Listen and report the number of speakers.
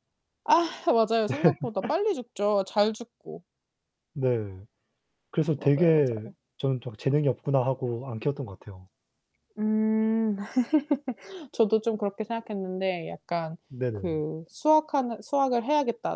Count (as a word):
two